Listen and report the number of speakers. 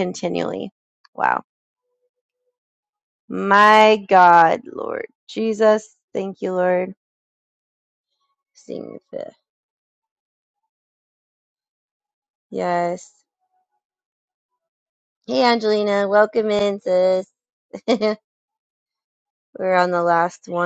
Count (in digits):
1